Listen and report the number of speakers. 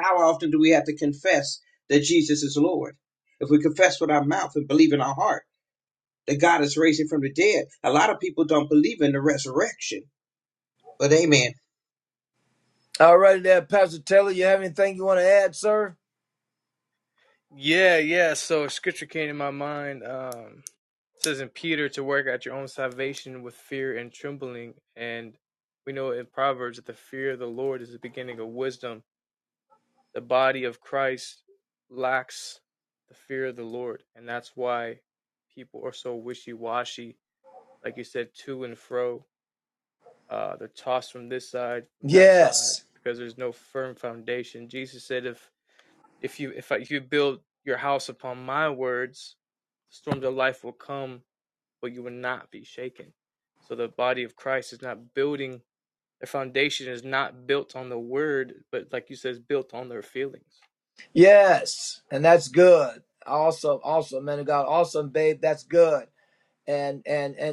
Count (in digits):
3